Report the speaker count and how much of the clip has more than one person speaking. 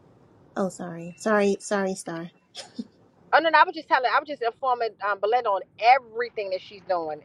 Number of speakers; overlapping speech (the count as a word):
two, no overlap